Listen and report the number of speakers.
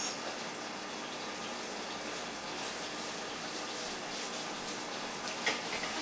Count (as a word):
zero